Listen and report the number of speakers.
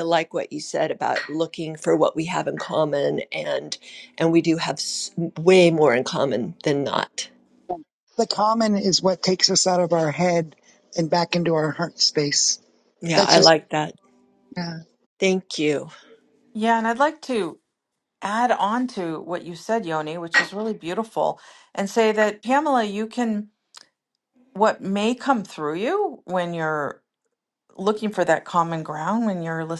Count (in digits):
3